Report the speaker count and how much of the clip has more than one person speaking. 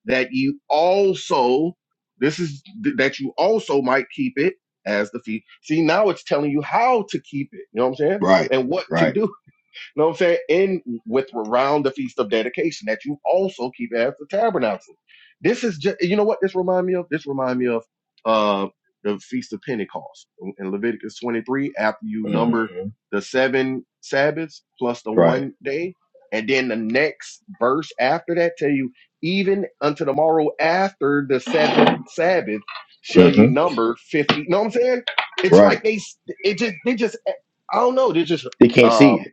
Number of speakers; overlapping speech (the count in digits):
2, about 7%